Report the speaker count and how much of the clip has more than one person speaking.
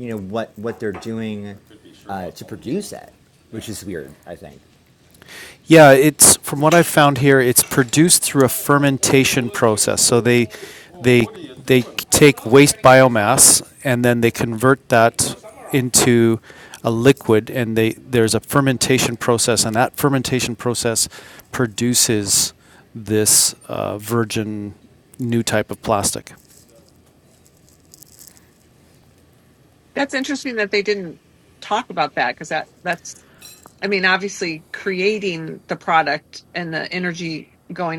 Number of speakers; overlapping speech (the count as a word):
three, no overlap